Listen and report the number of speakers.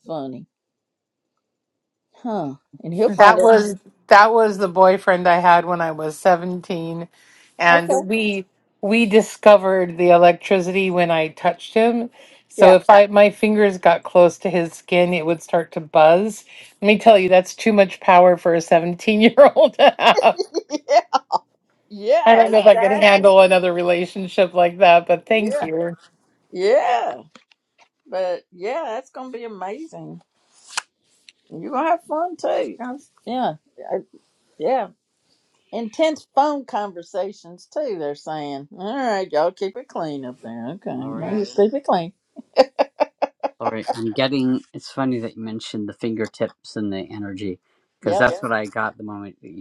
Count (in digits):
3